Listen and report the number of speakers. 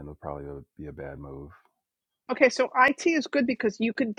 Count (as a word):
two